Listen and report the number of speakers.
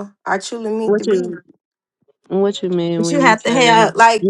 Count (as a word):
two